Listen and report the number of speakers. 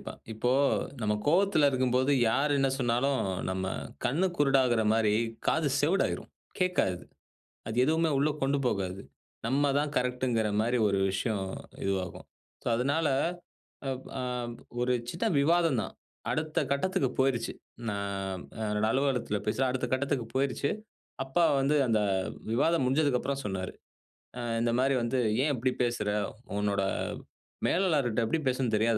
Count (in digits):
1